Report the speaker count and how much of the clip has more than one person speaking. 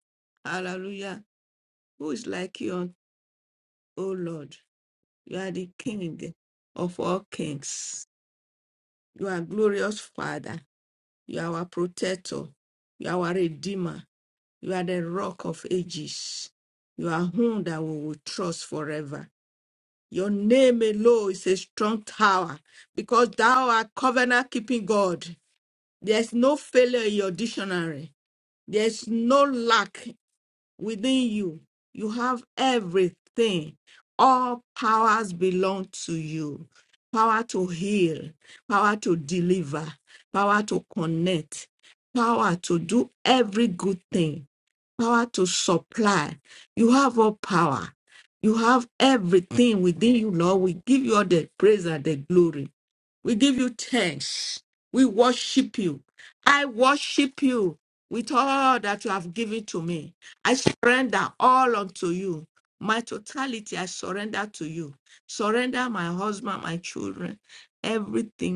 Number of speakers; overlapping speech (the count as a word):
one, no overlap